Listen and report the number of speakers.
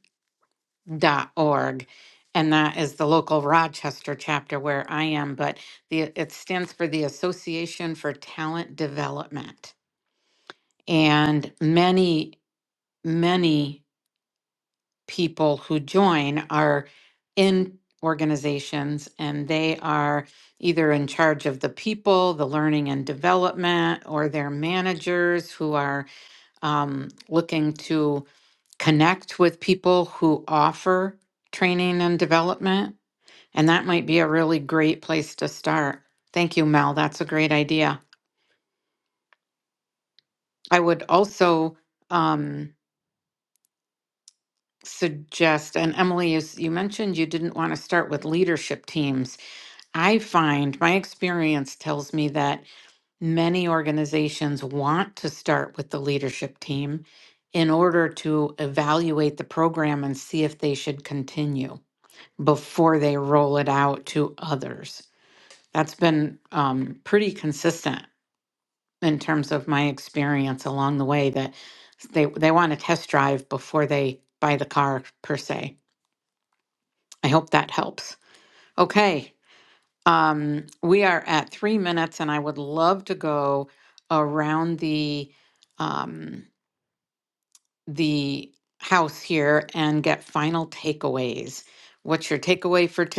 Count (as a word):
one